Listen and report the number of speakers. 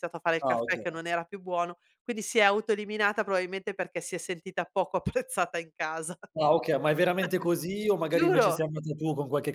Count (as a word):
two